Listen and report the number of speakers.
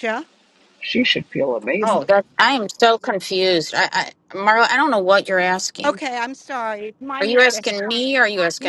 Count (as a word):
three